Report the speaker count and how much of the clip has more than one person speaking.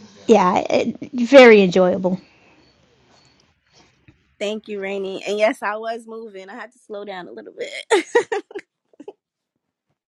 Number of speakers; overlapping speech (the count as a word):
two, no overlap